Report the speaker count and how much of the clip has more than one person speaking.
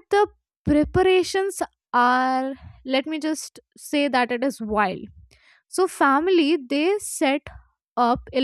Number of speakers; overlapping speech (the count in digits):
1, no overlap